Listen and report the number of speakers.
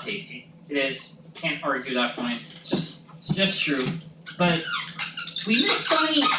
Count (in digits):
1